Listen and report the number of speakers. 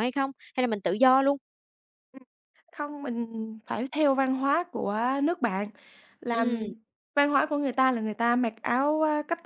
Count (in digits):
2